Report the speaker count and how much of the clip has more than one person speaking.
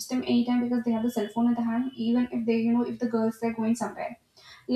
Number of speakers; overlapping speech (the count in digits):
1, no overlap